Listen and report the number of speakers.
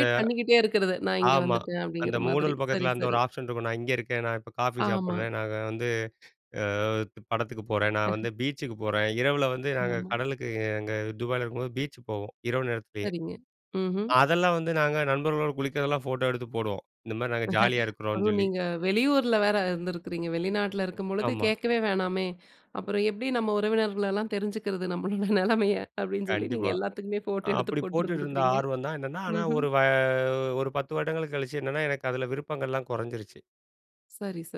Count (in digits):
2